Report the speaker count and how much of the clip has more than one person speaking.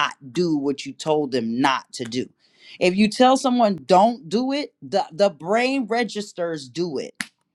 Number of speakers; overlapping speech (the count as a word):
one, no overlap